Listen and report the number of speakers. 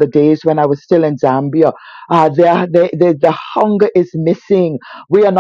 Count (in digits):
1